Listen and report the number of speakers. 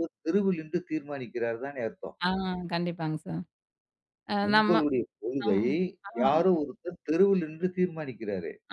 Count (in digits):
2